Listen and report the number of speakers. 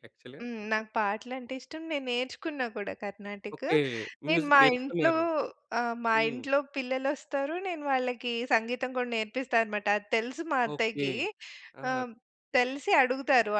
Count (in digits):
2